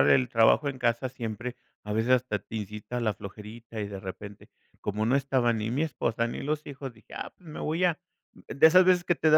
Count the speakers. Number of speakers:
one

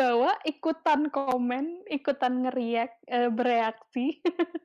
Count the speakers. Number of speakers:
one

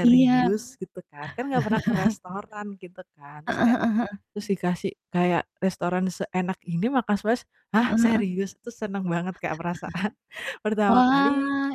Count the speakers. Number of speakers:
two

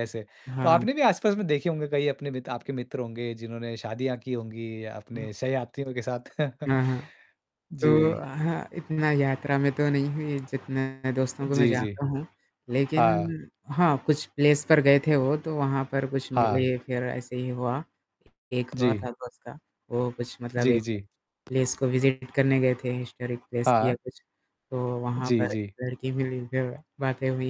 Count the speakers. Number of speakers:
two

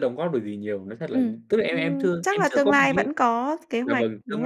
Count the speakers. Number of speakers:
two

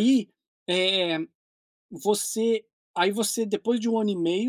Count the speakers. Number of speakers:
one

